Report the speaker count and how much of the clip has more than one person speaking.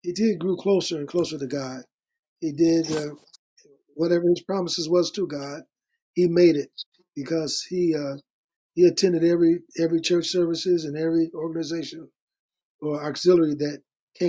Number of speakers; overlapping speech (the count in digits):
1, no overlap